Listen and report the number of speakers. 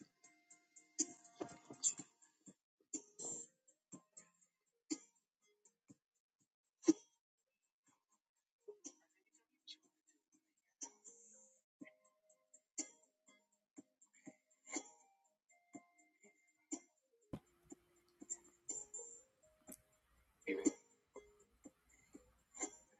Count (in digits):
0